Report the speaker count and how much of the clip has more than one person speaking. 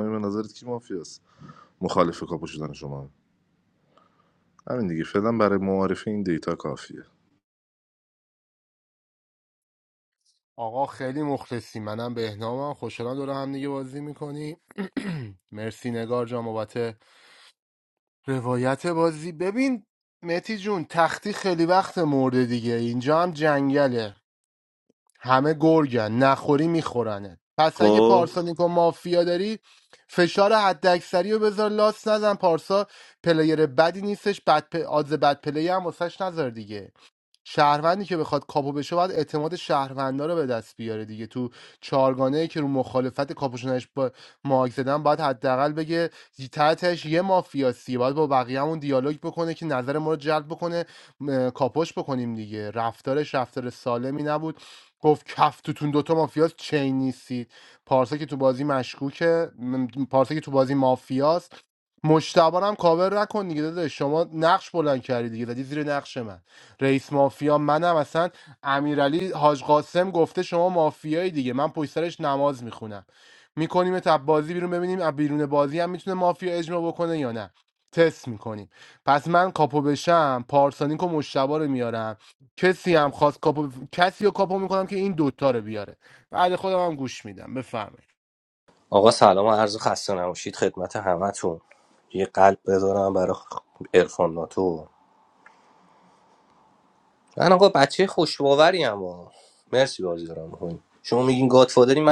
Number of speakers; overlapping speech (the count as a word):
three, about 1%